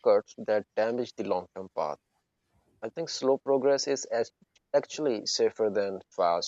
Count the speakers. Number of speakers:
1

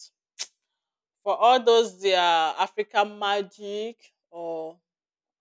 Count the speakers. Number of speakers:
1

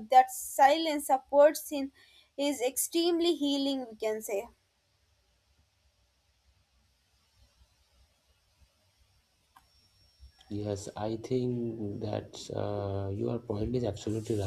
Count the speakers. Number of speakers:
2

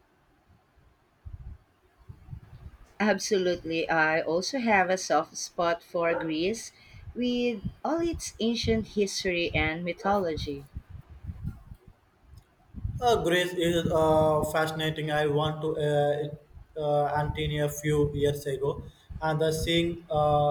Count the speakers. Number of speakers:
2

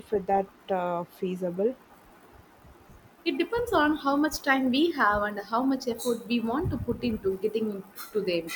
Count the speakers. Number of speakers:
2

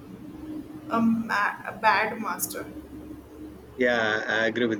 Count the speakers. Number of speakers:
2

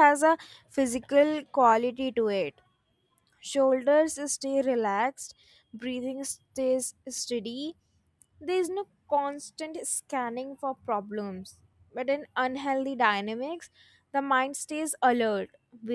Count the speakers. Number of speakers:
1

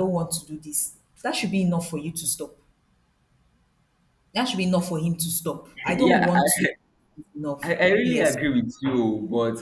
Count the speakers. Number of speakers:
2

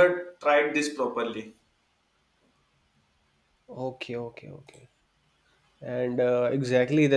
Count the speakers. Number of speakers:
2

